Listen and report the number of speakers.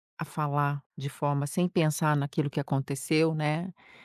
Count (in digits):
1